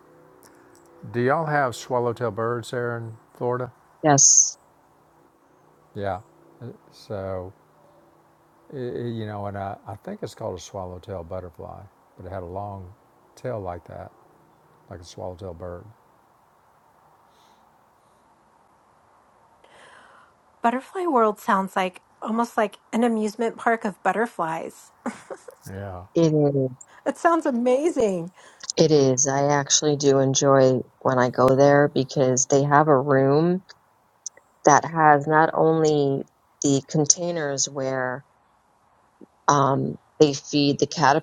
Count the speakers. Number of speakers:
three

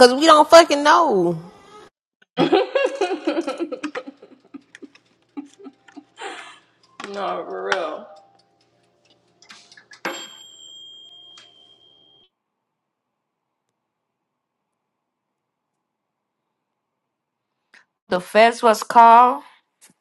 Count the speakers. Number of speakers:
three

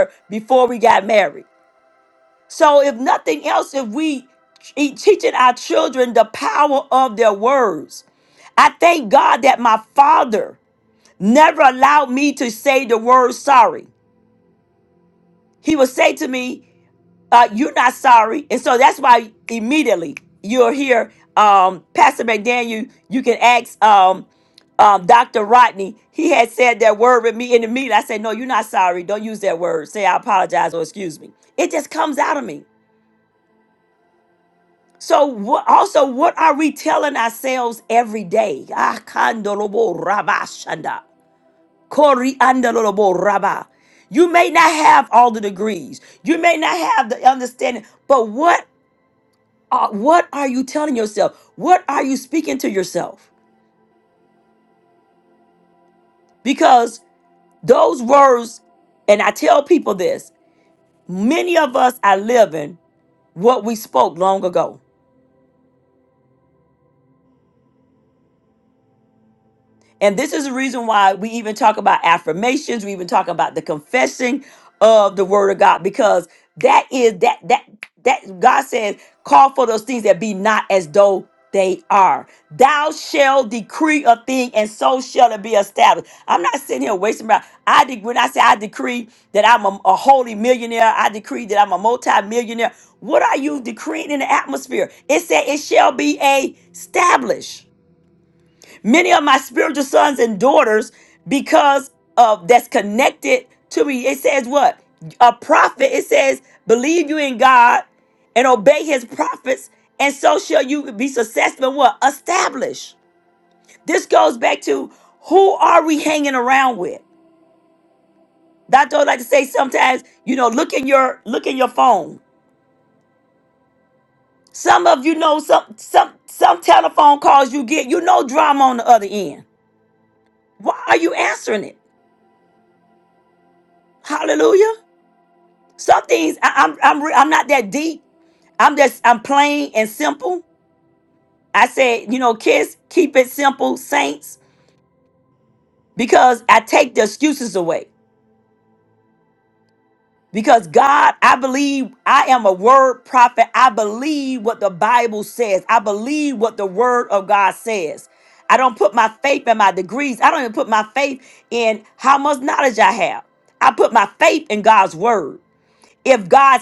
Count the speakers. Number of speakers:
one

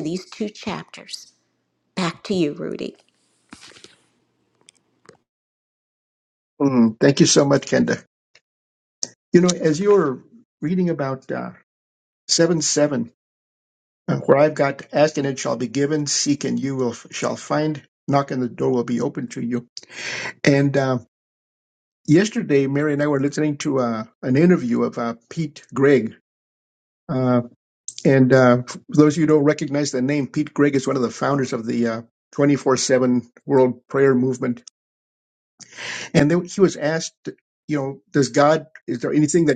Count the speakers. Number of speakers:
two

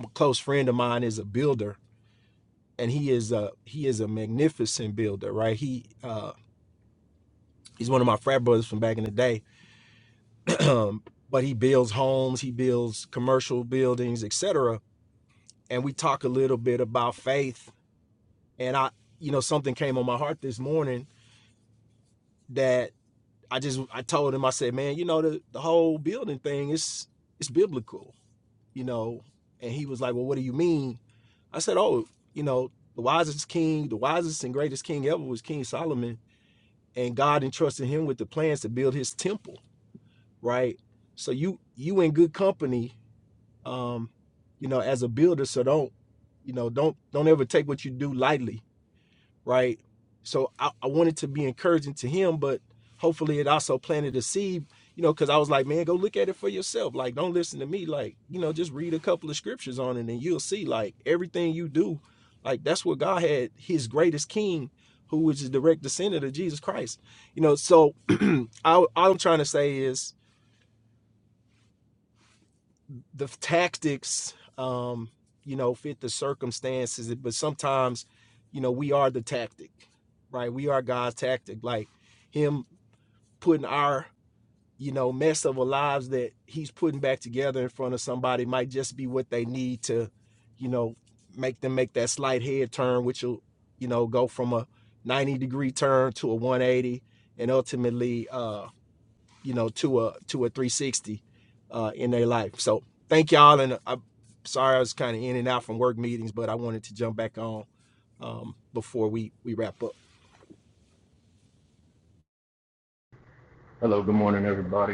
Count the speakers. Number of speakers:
two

